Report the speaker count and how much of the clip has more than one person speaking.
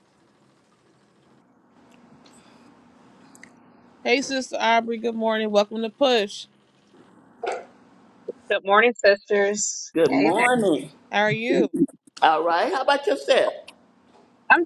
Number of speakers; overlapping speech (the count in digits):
3, about 3%